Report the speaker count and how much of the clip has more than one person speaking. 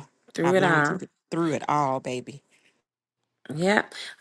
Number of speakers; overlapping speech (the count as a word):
two, about 13%